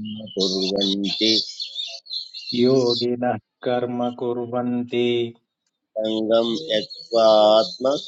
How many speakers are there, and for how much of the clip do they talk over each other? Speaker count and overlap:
two, no overlap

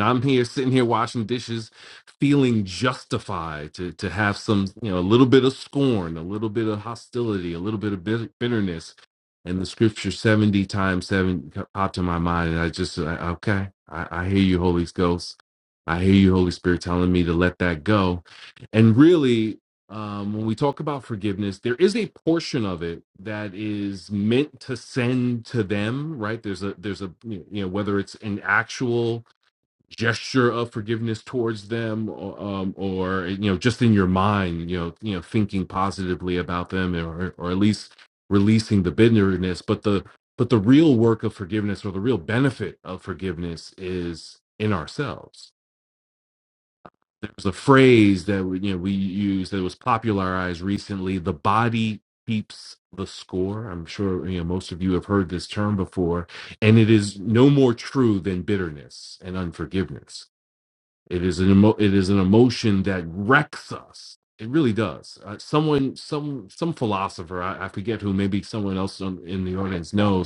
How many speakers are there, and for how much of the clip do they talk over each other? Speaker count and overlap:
one, no overlap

